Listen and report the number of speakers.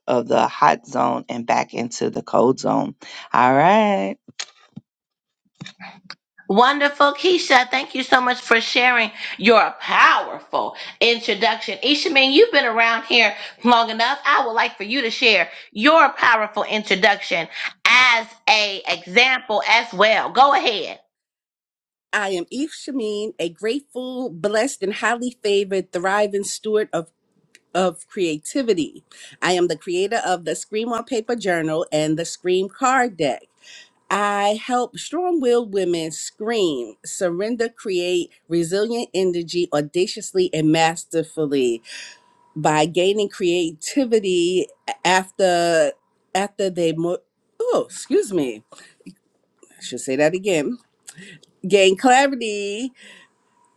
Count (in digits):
3